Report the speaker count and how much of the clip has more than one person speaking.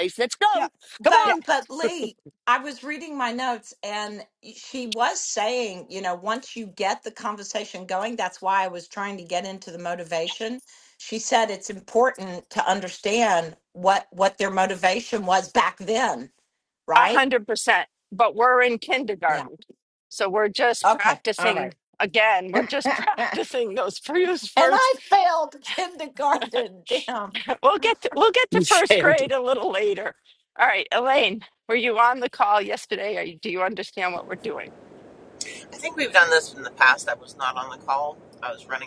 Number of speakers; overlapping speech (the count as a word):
four, about 9%